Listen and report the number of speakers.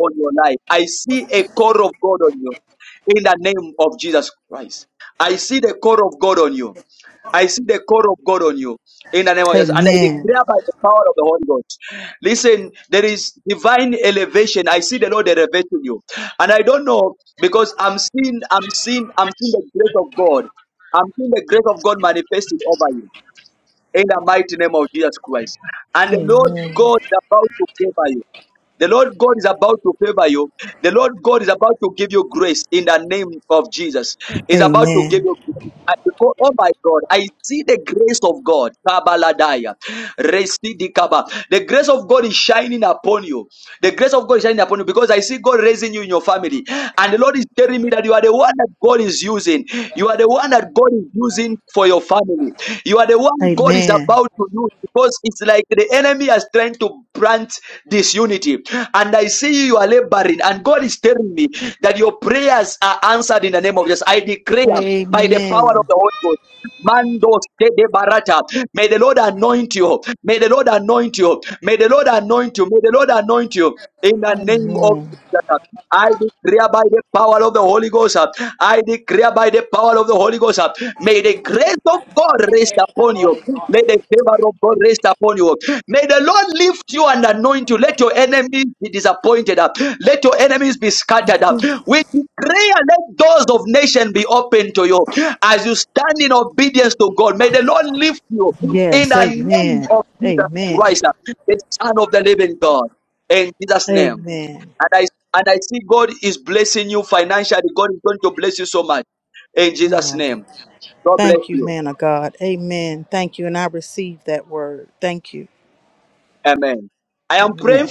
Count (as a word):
two